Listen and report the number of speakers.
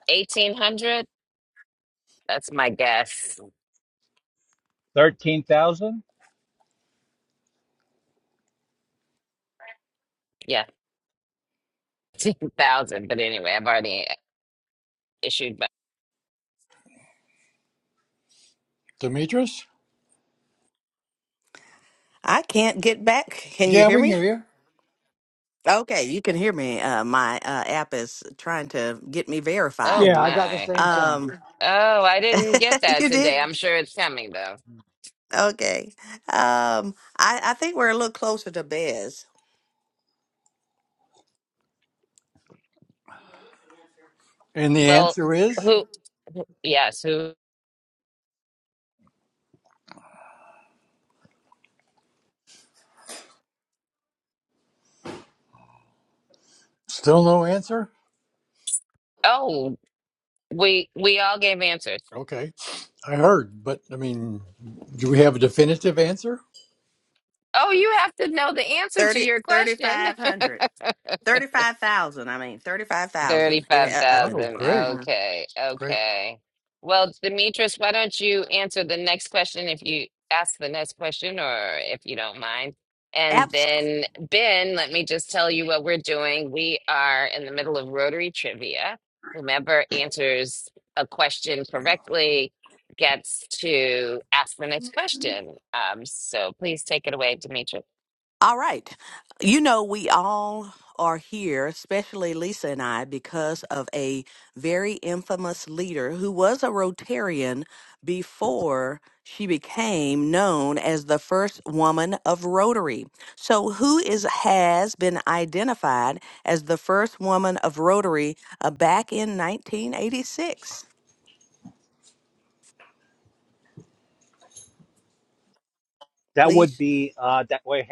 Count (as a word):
four